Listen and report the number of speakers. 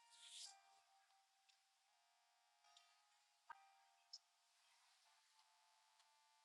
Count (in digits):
0